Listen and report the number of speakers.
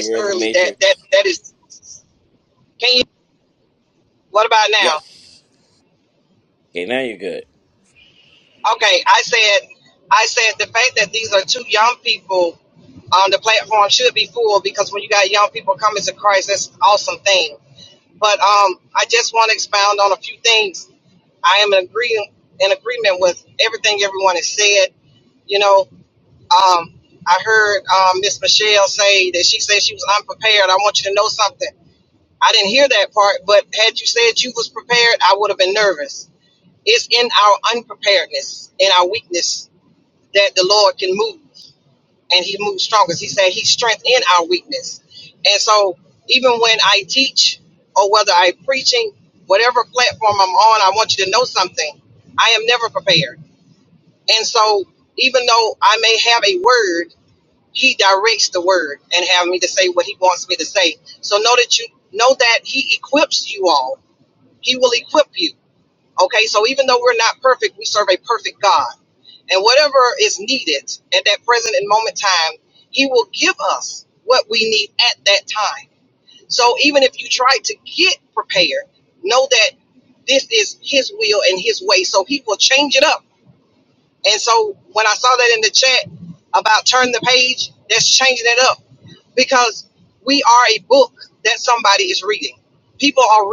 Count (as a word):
two